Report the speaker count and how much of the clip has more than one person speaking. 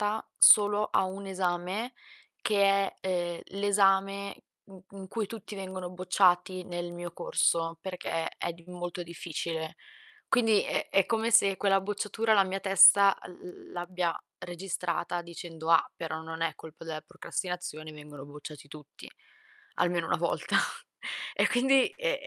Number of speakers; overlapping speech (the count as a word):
one, no overlap